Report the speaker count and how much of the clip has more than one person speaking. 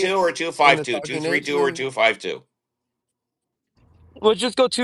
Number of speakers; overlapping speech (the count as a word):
two, about 30%